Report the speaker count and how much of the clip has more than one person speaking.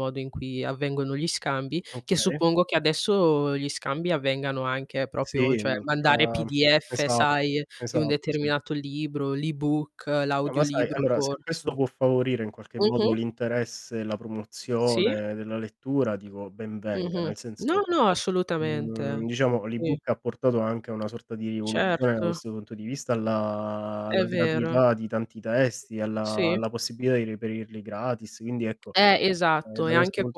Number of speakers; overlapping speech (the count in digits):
2, about 27%